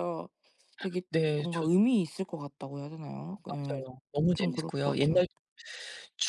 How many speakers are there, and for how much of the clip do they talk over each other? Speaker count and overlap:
two, about 24%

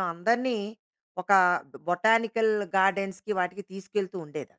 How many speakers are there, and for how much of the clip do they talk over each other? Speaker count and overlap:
one, no overlap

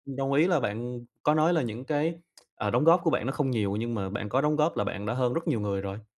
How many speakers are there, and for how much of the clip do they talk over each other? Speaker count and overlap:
one, no overlap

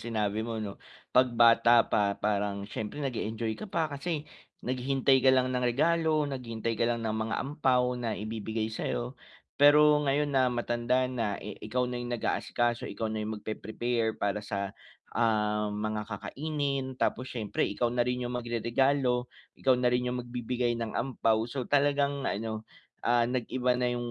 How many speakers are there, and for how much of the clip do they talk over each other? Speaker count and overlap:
one, no overlap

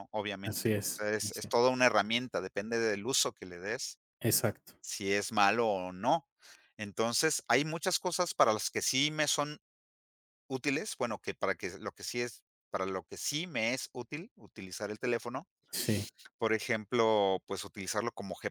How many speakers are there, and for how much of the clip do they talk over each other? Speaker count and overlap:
two, about 6%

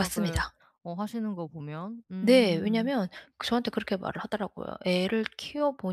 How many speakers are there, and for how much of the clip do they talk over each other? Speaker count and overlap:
two, about 19%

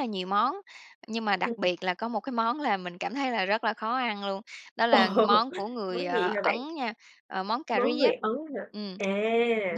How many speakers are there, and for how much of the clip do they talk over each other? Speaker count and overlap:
two, about 15%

